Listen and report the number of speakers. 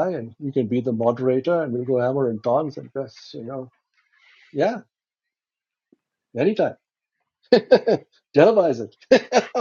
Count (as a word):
one